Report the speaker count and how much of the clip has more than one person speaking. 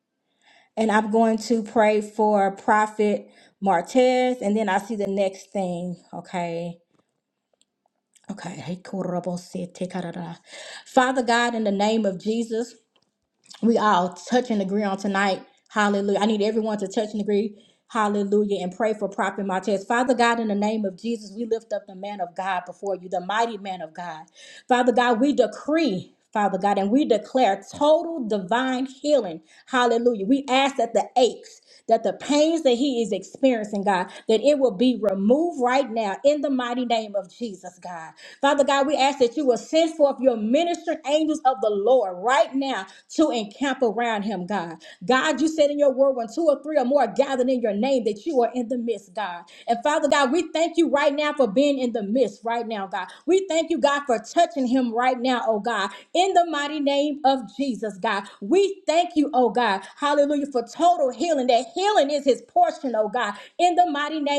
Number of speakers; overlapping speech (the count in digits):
1, no overlap